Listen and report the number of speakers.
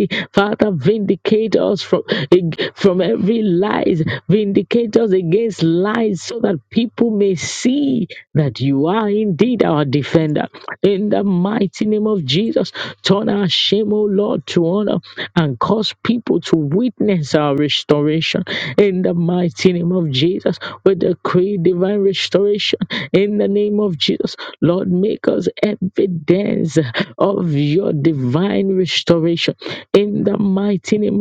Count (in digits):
1